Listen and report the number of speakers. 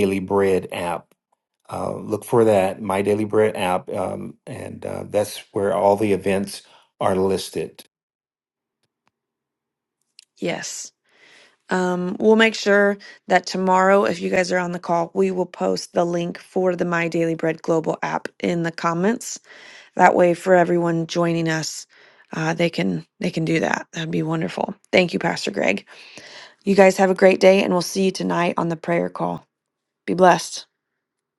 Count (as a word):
two